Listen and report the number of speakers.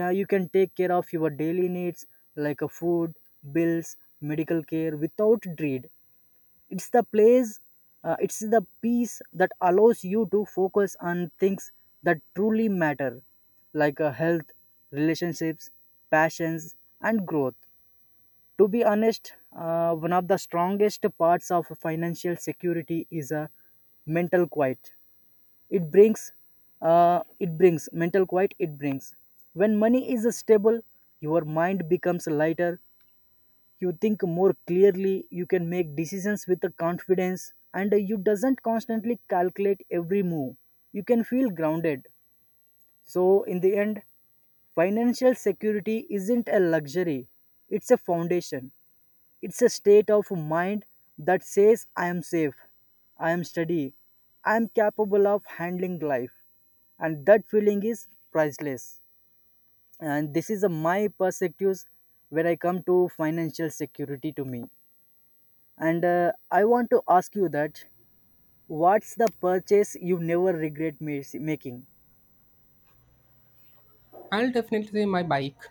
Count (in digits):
2